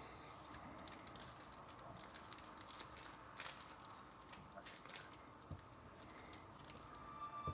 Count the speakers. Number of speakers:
zero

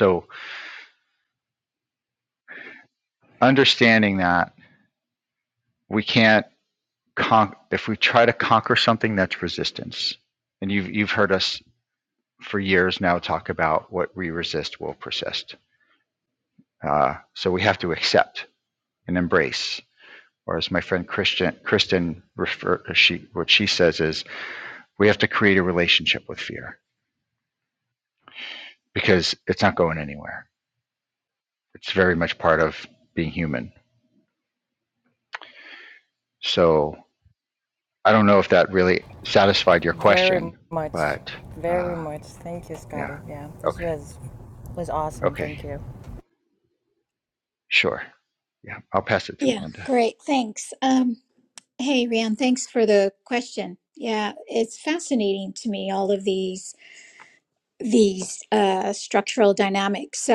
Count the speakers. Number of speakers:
three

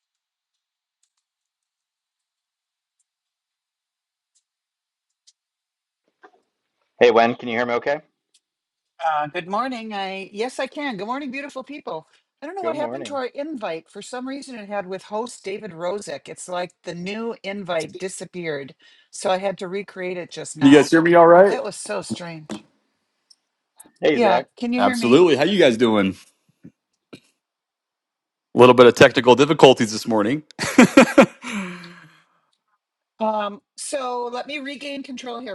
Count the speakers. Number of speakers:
three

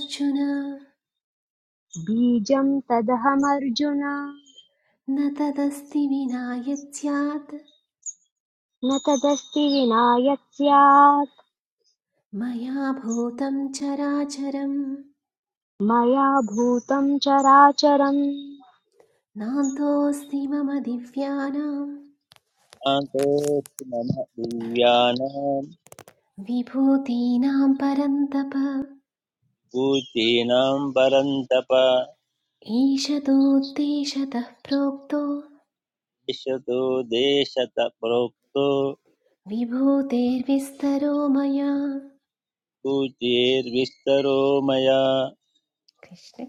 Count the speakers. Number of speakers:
three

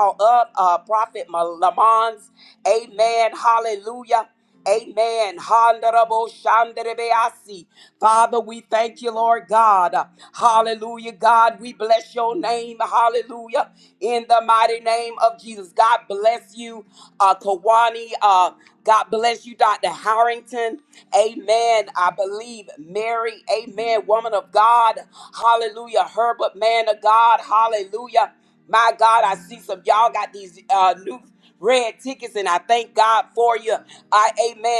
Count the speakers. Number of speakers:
one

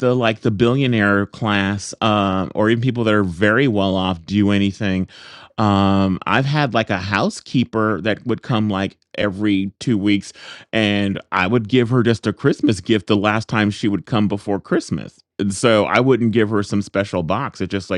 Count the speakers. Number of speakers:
one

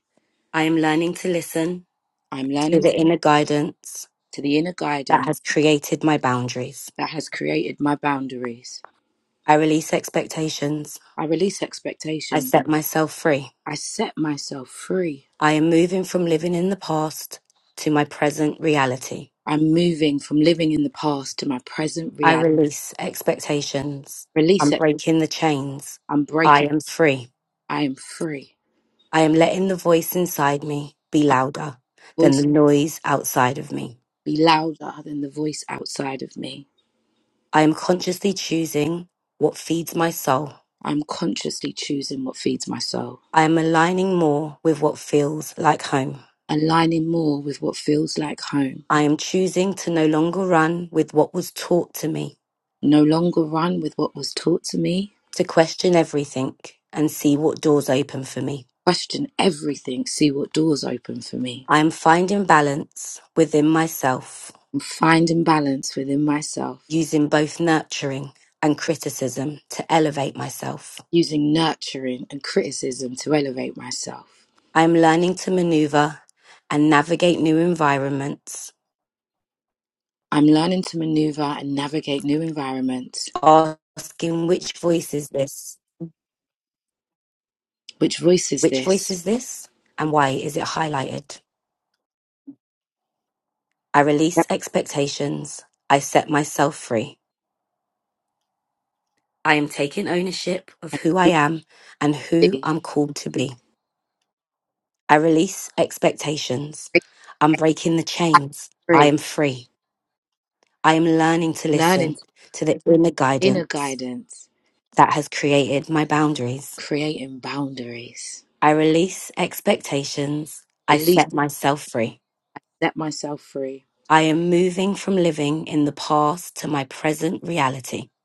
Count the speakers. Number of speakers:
two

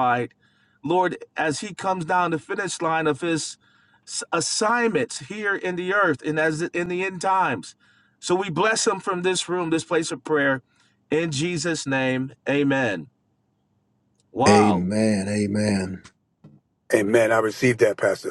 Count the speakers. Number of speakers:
three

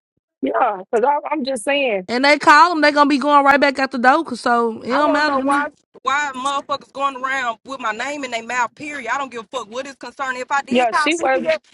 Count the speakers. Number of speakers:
three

